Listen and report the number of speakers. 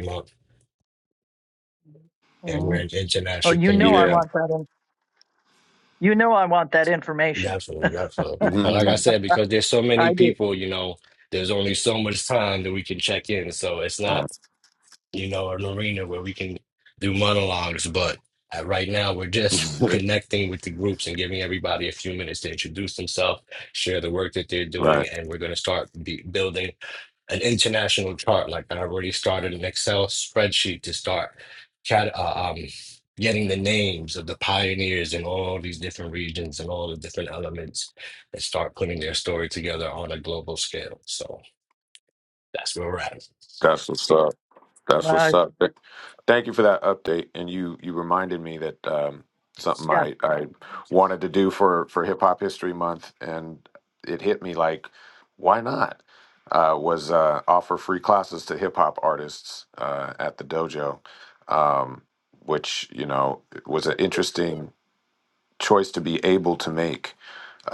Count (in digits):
3